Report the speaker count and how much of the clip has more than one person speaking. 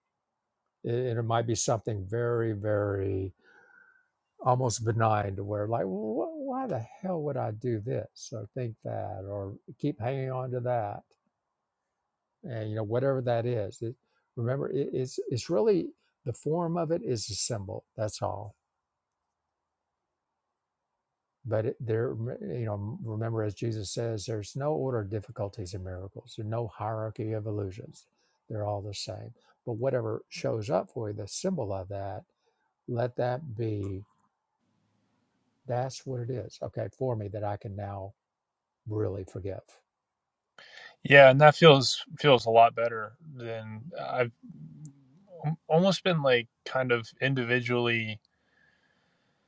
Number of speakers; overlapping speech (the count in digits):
2, no overlap